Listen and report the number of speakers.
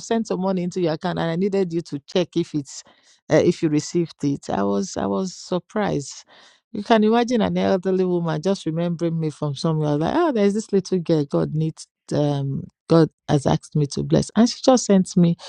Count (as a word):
one